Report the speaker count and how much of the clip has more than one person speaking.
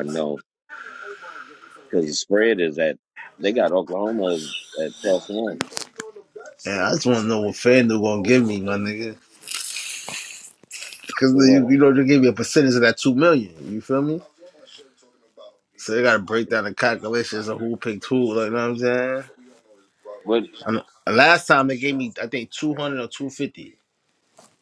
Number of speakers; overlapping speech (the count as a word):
two, about 1%